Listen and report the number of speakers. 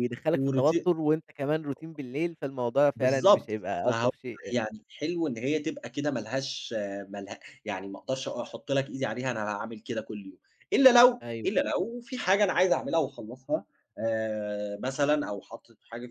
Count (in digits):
2